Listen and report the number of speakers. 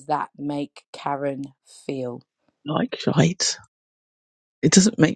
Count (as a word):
two